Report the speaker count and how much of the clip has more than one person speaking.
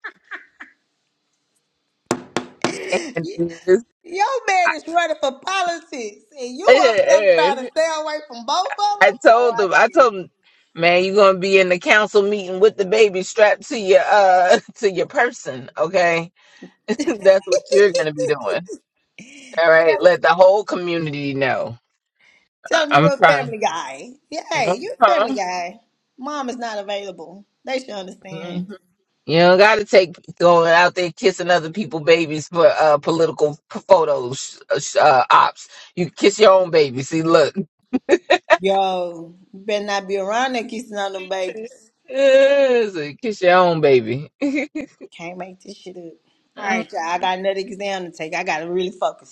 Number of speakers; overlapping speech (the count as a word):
two, about 7%